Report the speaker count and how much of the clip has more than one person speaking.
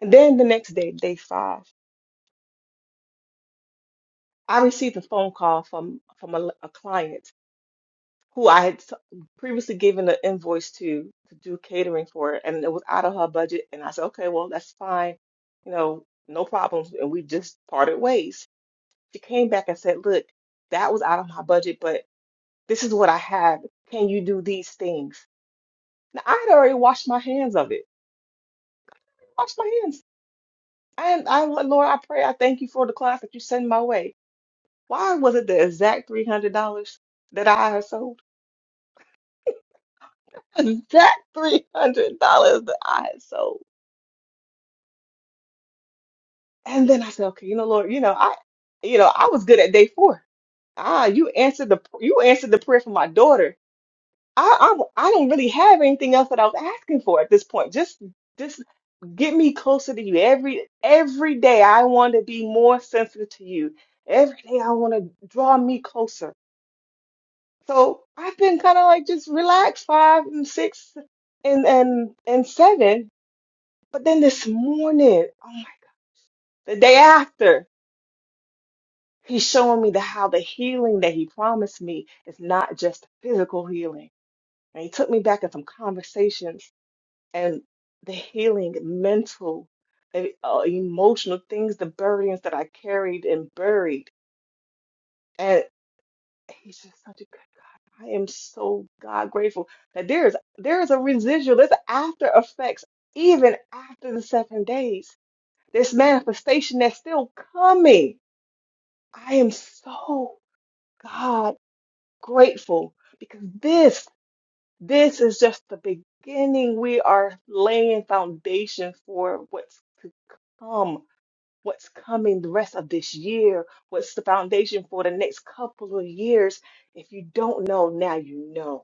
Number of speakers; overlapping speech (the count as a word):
one, no overlap